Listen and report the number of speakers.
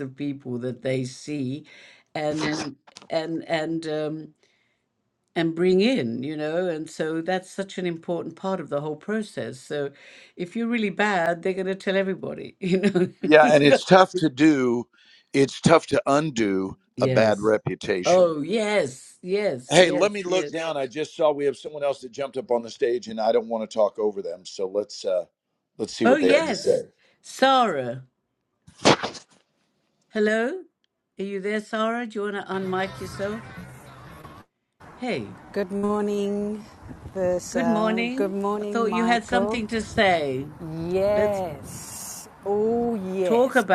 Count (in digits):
3